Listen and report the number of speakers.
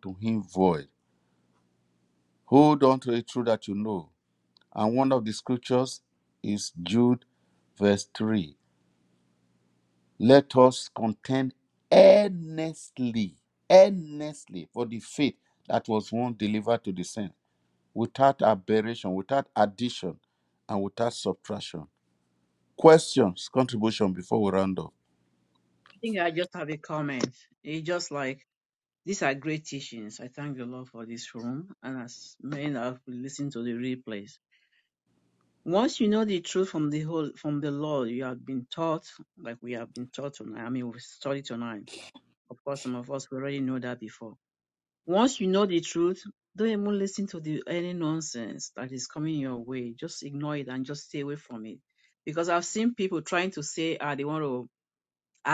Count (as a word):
two